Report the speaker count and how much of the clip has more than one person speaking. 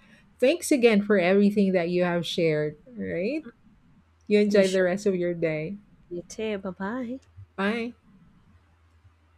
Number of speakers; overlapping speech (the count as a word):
two, about 4%